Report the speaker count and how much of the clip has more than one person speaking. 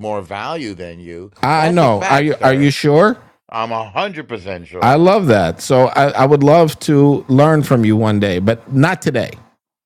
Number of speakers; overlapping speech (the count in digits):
2, about 15%